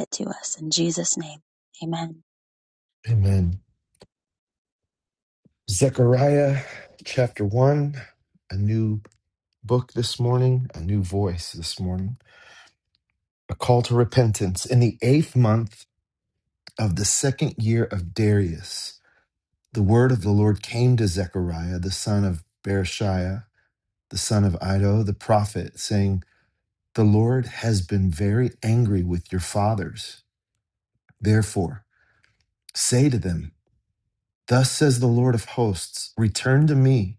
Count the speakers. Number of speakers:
2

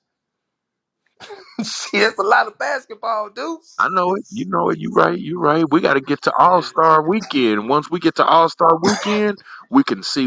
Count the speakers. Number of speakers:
2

